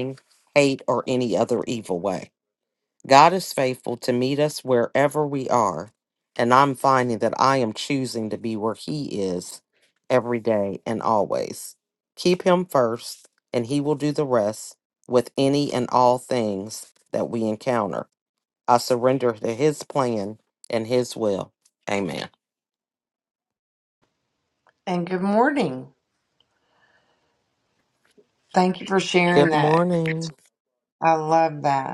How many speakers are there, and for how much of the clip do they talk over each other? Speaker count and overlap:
two, about 2%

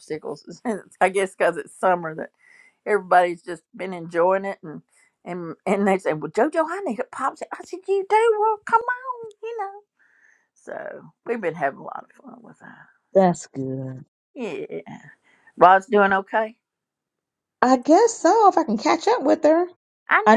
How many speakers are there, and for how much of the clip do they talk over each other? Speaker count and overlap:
two, about 1%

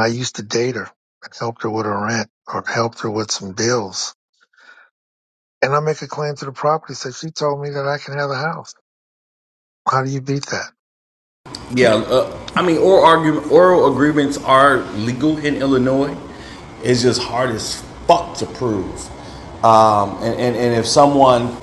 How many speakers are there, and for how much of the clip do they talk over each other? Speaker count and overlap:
two, no overlap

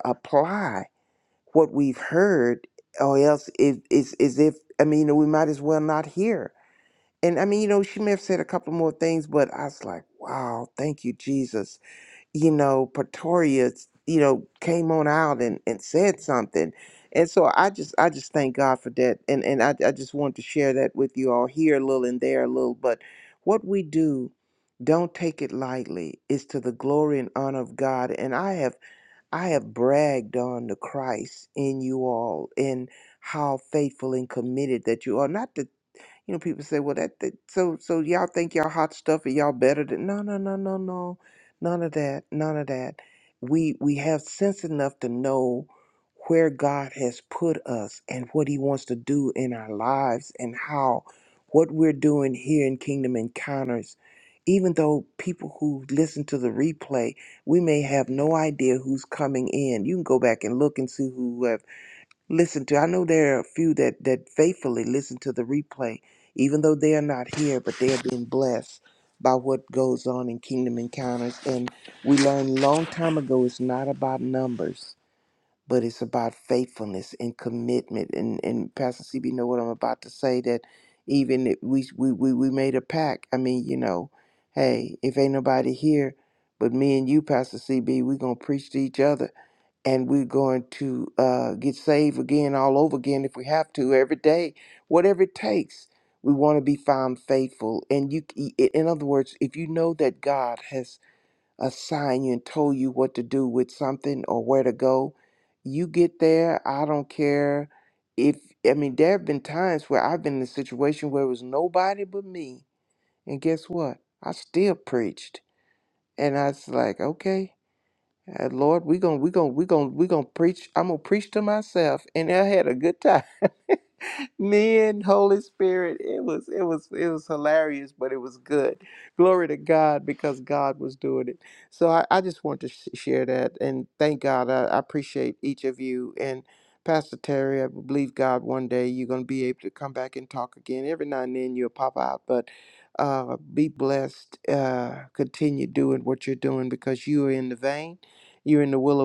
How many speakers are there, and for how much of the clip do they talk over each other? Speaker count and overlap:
one, no overlap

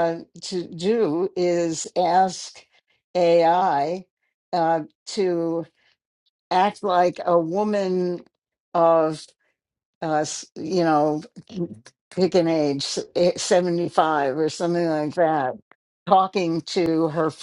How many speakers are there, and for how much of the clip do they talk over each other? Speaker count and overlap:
one, no overlap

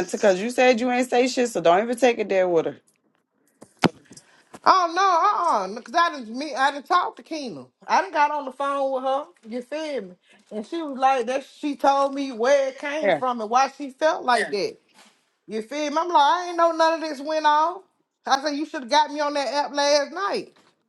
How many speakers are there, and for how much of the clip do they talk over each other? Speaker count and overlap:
two, about 1%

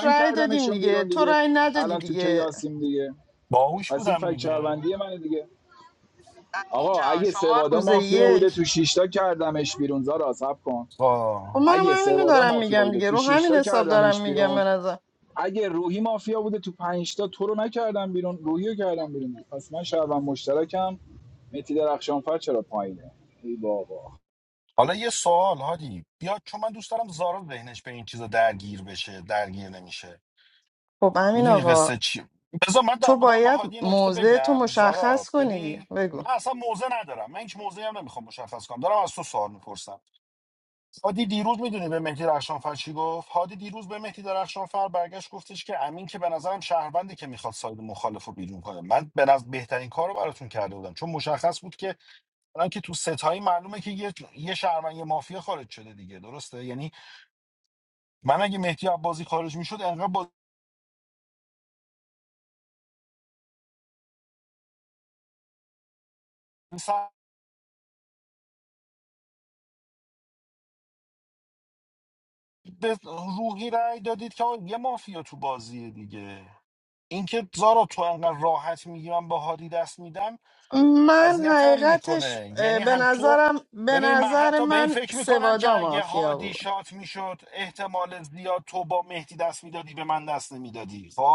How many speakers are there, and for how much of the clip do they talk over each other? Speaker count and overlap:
three, about 18%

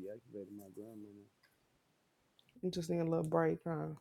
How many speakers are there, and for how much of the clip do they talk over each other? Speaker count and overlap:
two, no overlap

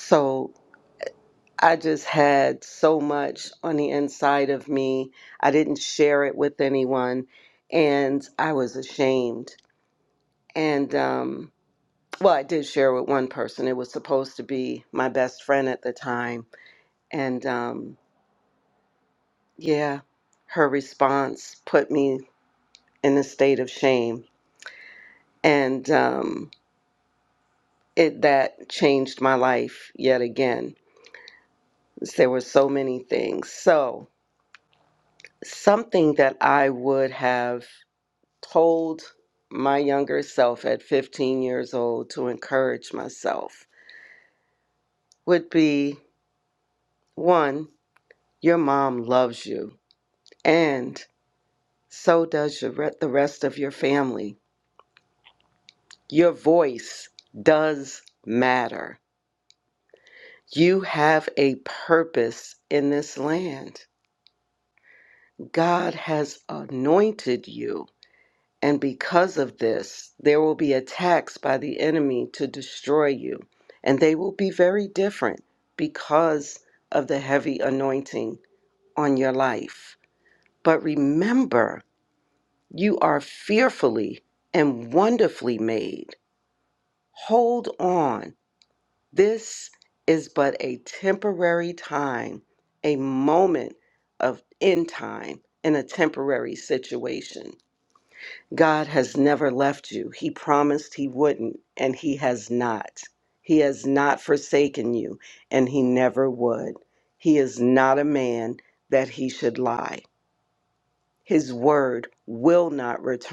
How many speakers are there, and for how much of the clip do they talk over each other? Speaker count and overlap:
one, no overlap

